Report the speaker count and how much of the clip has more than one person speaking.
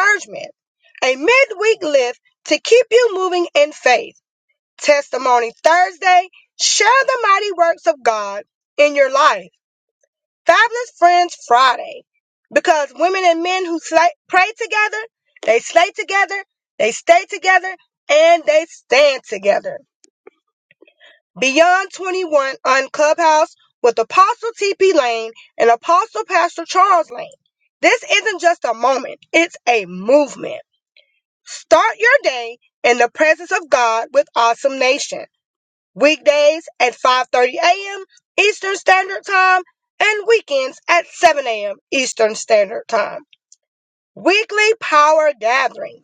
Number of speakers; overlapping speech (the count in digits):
1, no overlap